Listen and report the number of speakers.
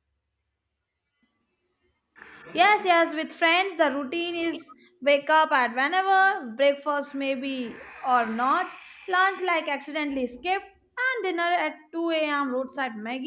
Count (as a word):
one